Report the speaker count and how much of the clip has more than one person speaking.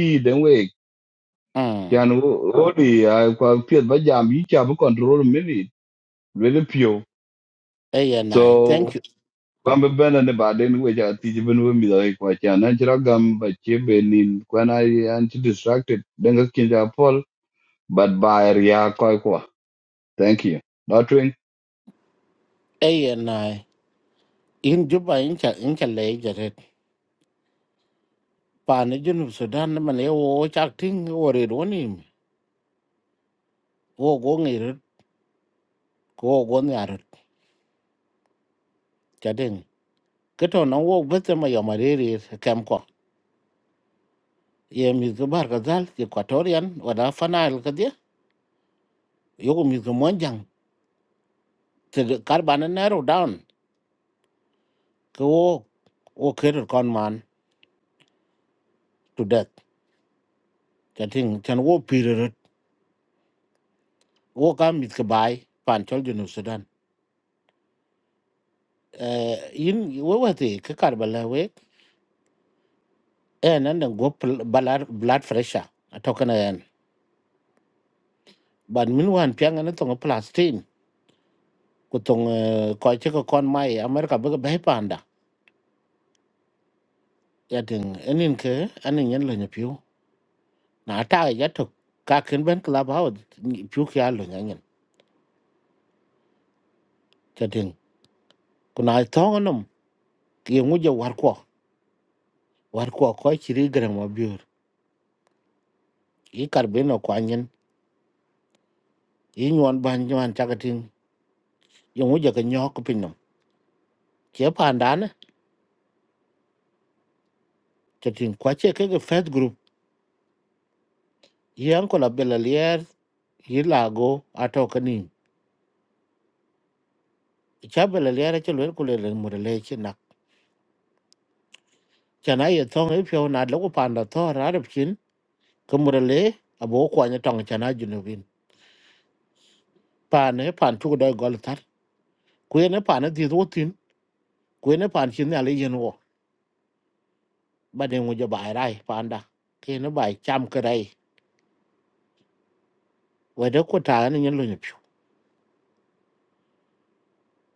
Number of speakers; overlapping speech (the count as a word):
two, under 1%